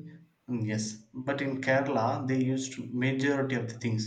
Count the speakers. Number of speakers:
one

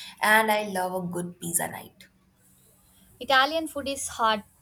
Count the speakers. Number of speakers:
two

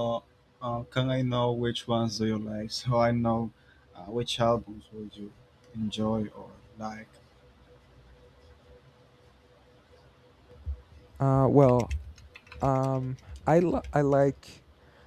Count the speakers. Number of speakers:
two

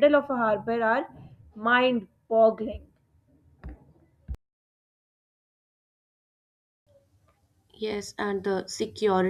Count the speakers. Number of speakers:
two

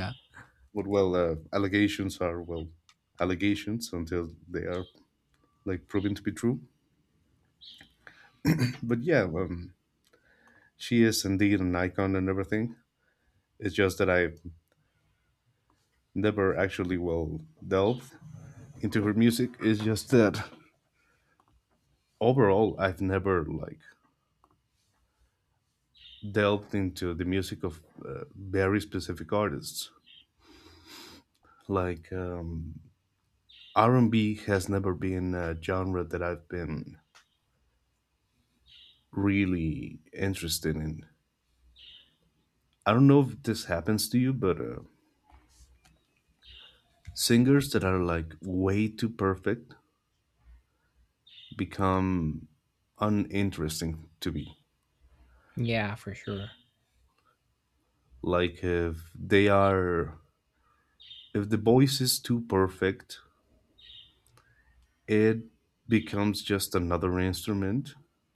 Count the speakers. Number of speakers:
two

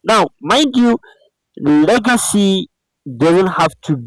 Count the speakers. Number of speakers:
one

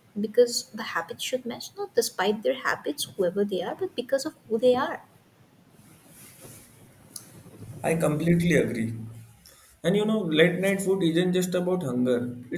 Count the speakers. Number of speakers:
two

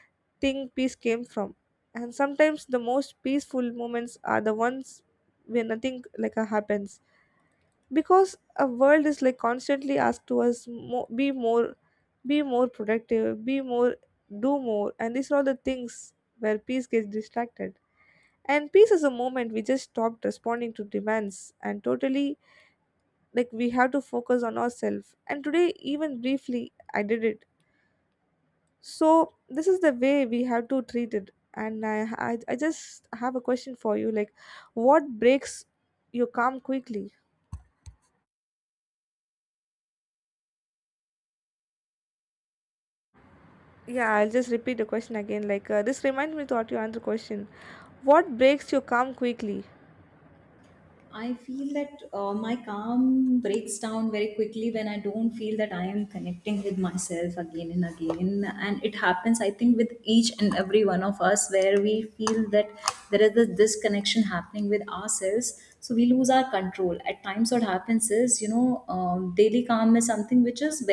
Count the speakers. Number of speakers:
two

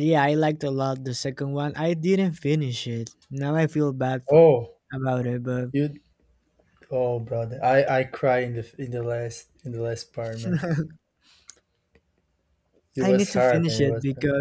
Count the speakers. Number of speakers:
two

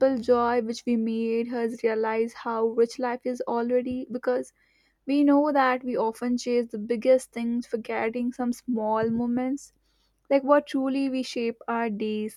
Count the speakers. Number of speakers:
one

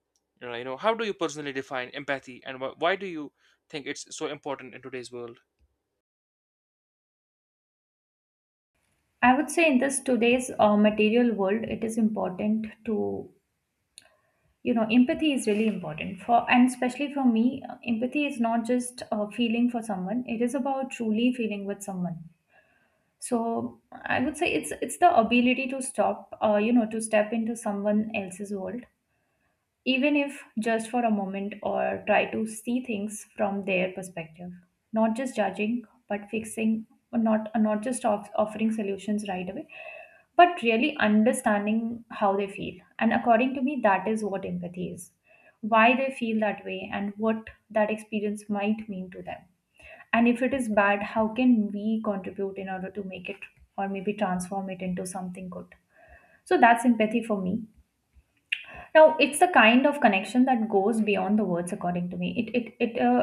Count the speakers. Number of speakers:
two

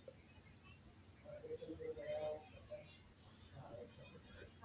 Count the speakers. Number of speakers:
zero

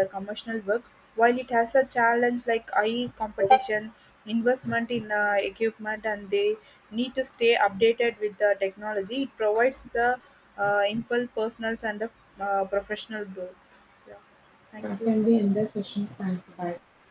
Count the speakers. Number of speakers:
two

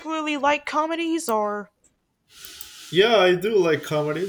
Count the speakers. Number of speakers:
two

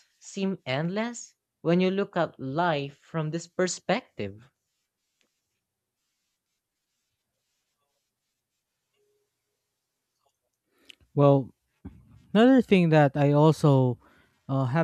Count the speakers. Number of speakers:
two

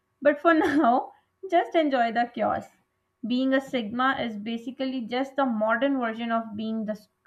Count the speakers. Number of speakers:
one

